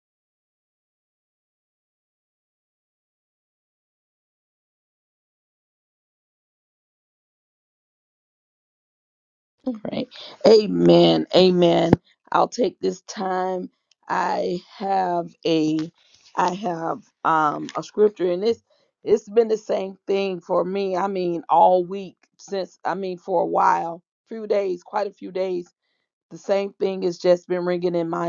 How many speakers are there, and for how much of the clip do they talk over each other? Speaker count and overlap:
1, no overlap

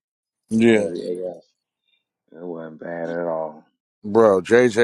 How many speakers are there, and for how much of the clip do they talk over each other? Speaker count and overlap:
2, about 6%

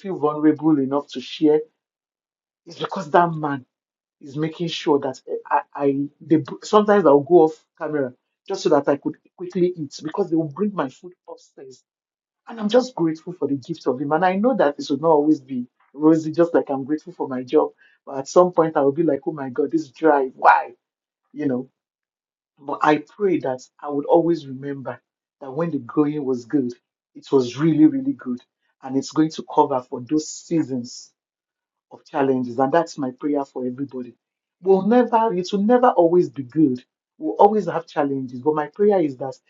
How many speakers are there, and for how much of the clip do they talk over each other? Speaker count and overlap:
1, no overlap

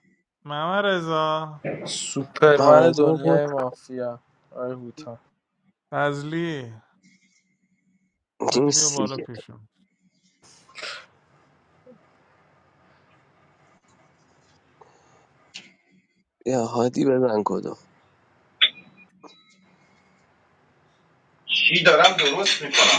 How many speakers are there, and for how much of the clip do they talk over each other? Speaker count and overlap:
4, about 7%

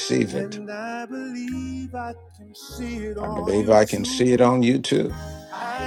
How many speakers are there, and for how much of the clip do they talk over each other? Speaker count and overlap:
2, about 25%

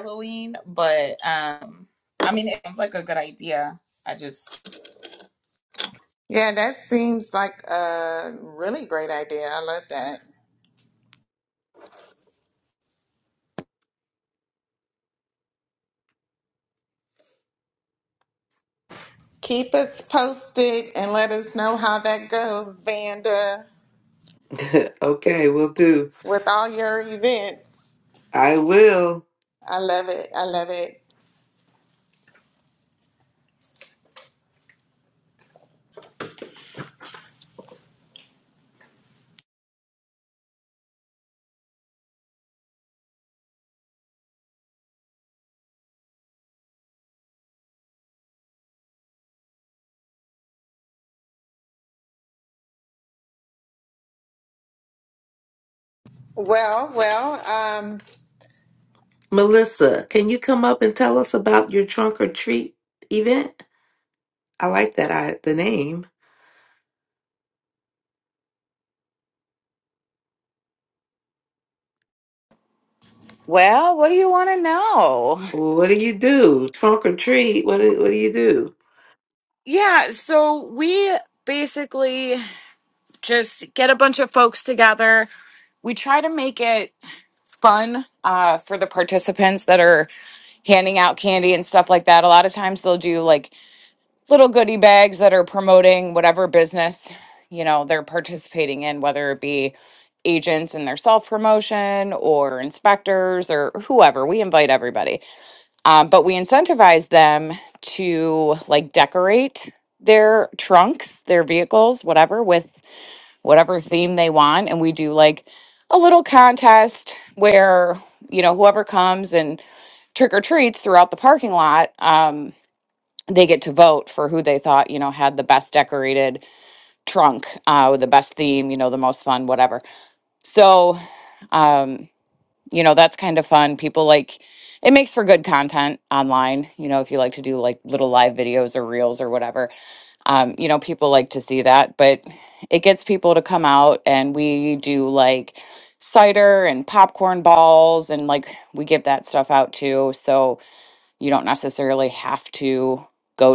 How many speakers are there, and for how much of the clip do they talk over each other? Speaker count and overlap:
4, no overlap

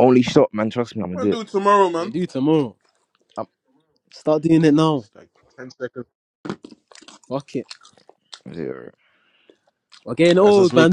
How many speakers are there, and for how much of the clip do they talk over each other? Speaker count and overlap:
3, about 8%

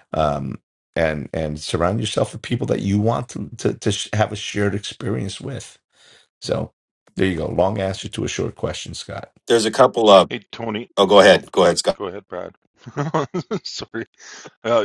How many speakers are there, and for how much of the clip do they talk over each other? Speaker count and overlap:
3, about 1%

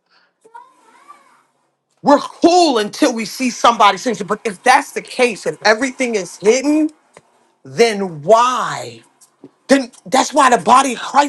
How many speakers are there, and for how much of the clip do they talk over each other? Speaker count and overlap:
1, no overlap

